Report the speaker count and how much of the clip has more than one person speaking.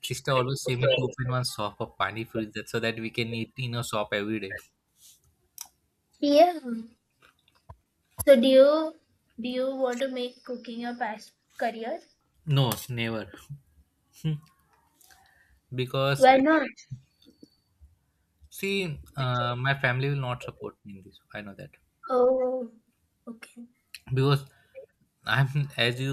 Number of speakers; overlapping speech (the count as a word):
two, under 1%